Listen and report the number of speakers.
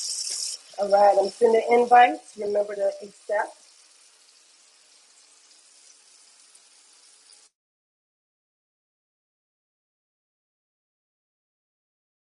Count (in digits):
1